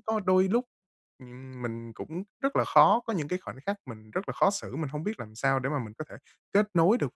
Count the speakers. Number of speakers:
1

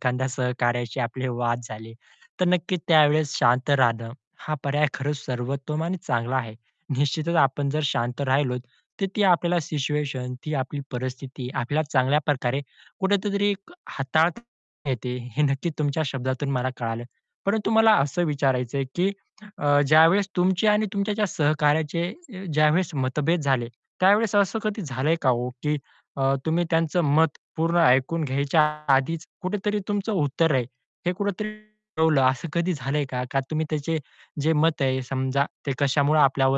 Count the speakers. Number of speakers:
1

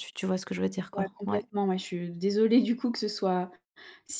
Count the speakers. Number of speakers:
2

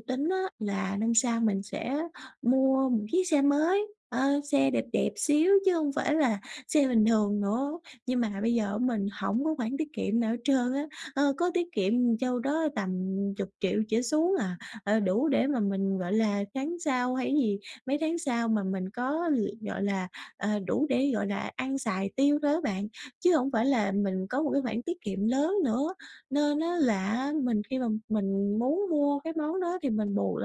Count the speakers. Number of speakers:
1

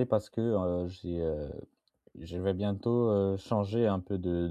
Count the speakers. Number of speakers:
1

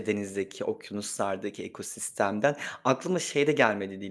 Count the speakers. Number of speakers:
1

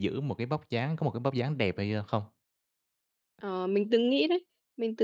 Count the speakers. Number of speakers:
2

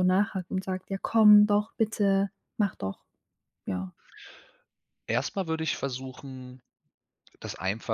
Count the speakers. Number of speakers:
2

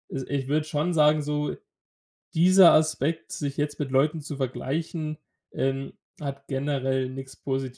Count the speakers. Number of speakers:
1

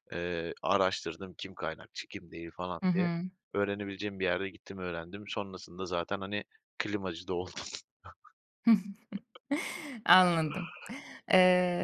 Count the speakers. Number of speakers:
2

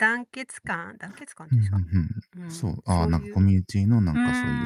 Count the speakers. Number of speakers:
2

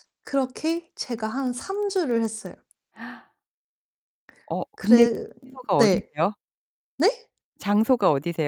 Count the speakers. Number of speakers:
2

